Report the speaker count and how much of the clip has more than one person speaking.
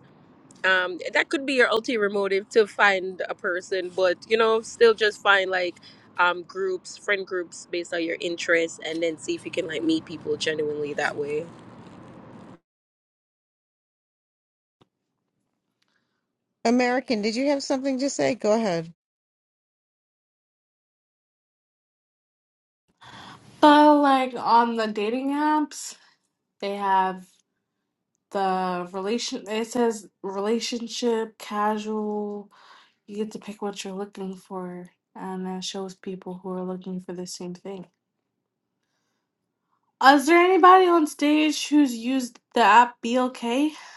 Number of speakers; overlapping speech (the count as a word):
three, no overlap